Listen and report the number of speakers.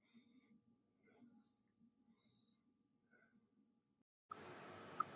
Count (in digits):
0